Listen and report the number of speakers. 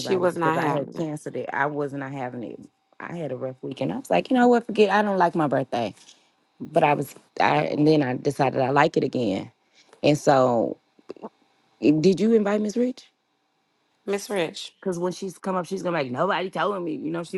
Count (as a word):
two